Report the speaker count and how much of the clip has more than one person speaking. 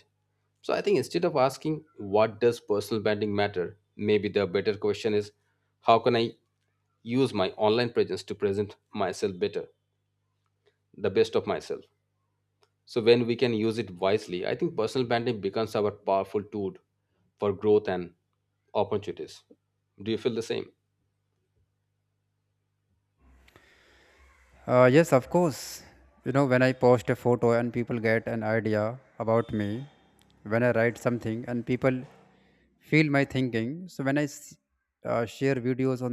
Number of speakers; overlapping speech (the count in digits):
2, no overlap